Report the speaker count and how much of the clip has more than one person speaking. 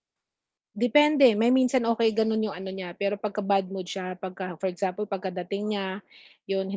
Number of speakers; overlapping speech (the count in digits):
1, no overlap